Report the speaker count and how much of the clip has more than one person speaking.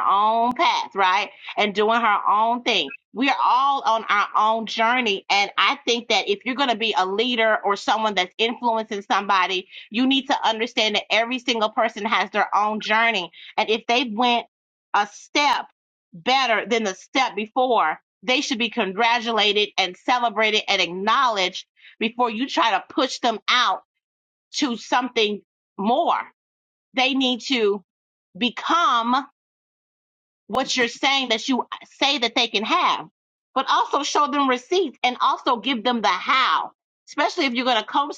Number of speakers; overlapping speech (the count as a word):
one, no overlap